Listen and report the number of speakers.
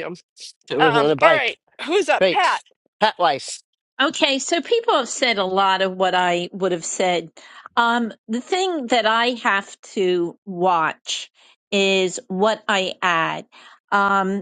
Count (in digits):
3